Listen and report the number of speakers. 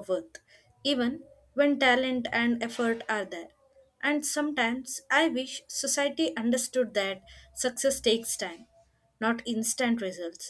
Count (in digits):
1